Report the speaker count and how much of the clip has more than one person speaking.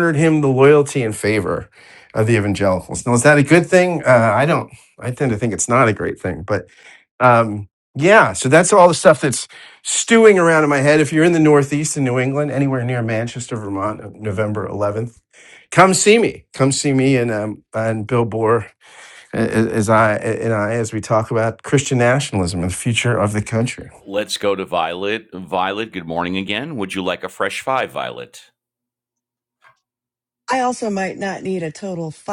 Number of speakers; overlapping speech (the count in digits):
3, no overlap